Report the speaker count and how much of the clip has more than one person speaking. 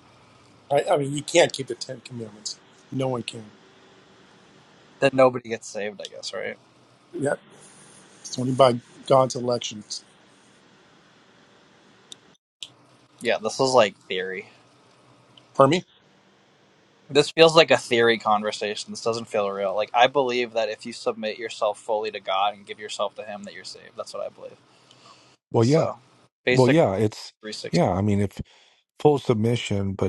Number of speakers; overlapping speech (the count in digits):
3, about 2%